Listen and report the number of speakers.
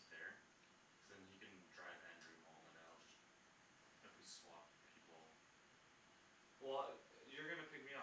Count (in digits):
2